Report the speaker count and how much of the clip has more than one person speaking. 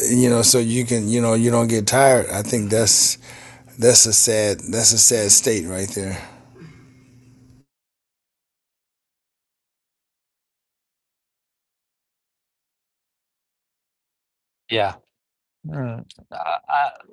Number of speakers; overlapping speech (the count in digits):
2, no overlap